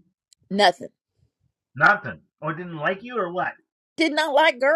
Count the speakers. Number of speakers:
two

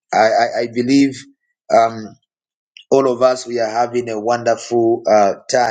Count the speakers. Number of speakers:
one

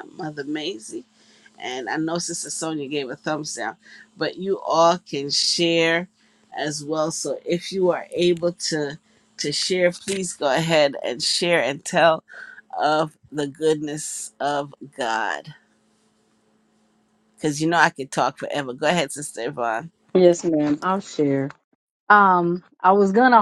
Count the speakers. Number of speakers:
two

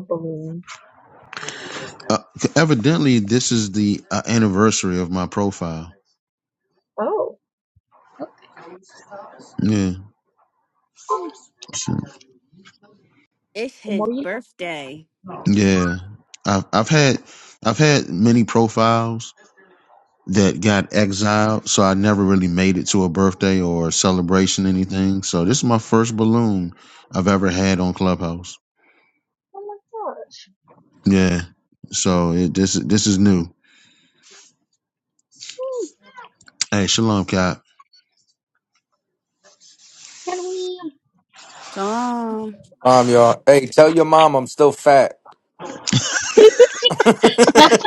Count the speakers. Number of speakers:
four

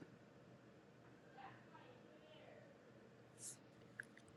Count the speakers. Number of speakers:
zero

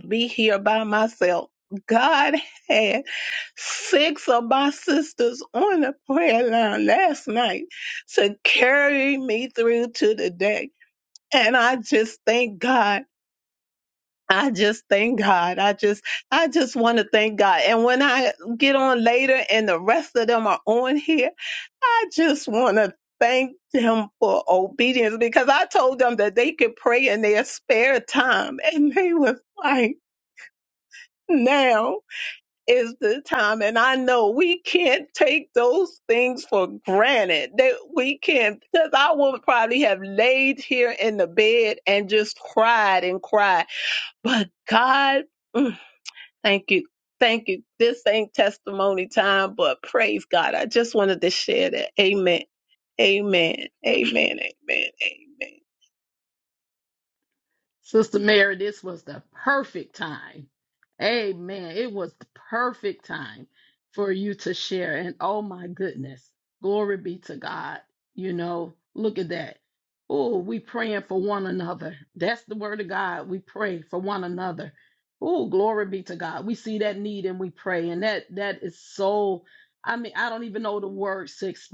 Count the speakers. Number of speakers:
two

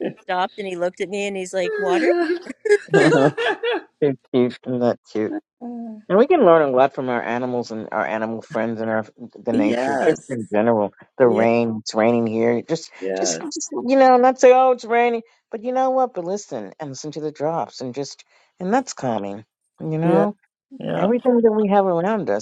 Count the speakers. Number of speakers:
three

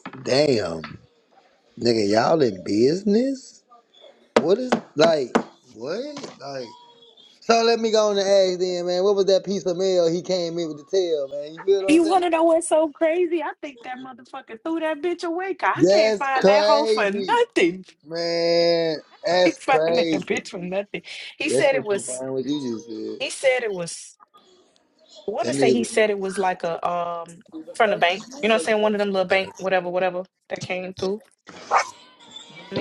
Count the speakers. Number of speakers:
two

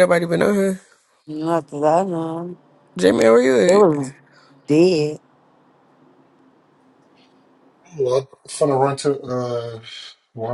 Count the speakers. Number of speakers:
three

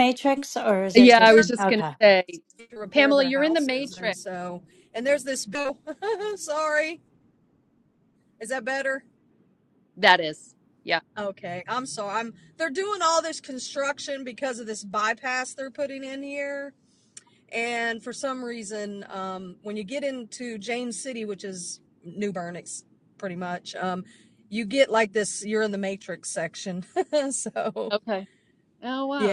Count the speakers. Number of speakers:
three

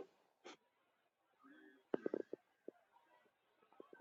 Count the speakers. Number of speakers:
zero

